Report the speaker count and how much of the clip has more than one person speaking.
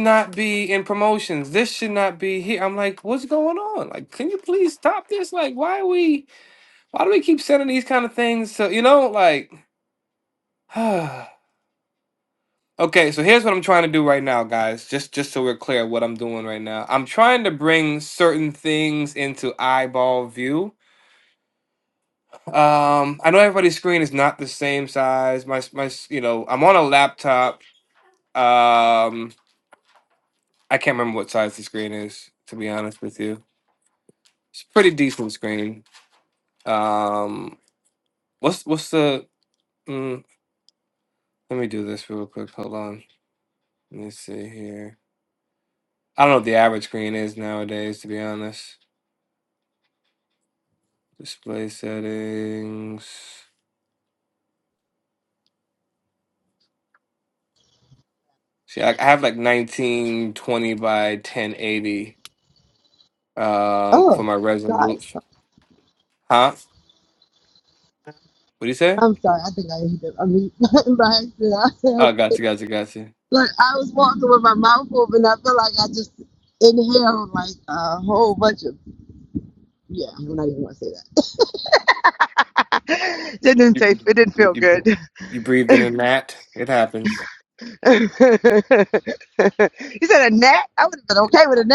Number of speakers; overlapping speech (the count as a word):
two, about 1%